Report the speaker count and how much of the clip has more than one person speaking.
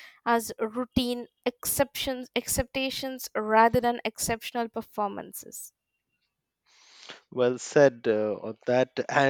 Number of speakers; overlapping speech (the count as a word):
two, no overlap